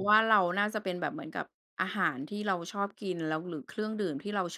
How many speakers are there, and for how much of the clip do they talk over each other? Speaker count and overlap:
one, no overlap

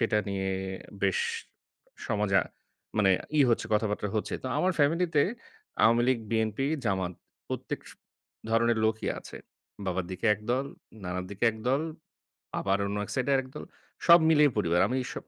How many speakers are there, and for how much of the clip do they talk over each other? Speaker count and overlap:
one, no overlap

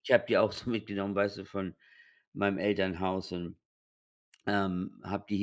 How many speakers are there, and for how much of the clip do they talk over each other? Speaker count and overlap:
one, no overlap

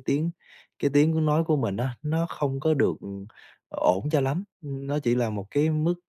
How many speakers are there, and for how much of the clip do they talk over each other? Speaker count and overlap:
one, no overlap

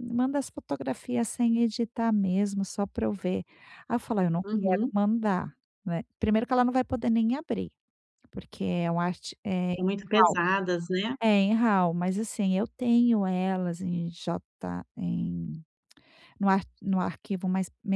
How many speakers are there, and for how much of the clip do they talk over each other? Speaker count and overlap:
two, about 6%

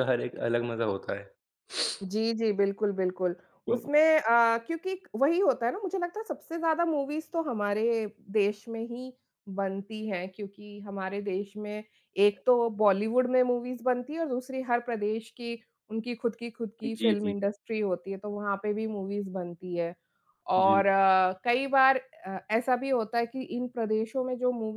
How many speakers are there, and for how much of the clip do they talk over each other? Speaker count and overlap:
two, about 3%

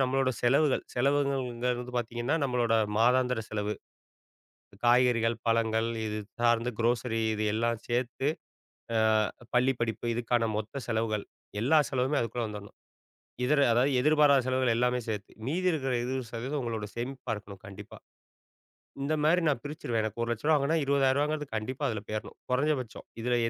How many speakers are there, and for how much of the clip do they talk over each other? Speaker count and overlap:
one, no overlap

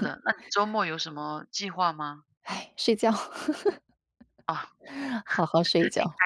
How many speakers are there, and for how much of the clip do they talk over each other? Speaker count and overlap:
two, no overlap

